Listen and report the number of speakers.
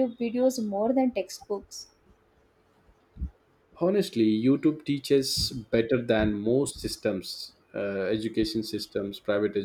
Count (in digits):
2